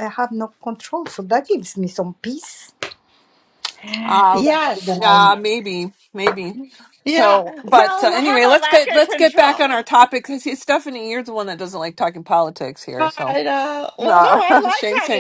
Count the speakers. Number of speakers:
3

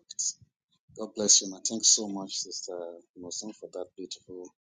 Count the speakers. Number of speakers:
1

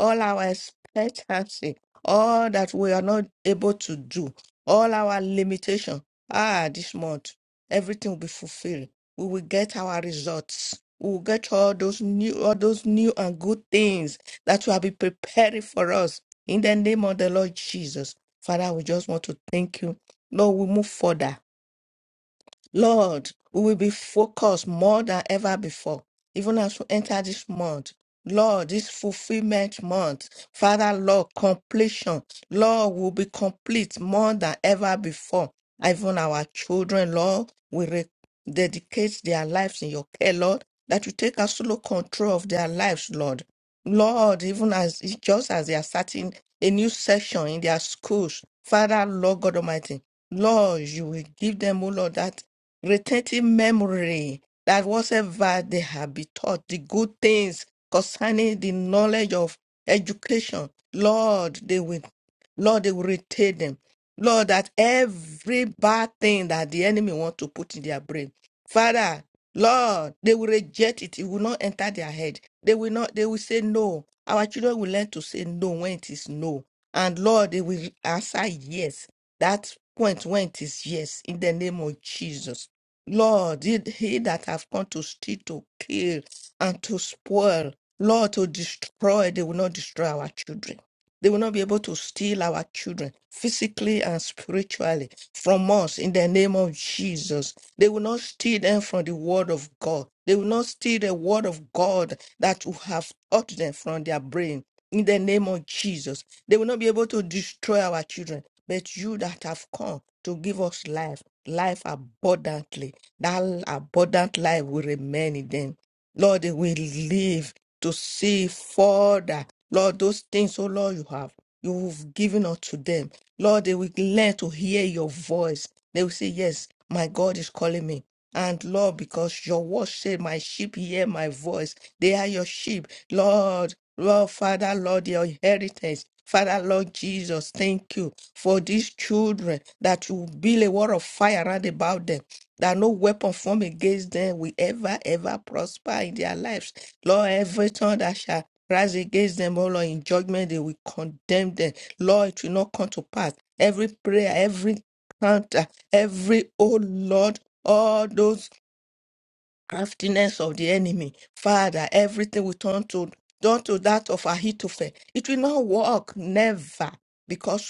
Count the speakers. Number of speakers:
1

